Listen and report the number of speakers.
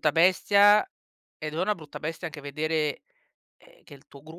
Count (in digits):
1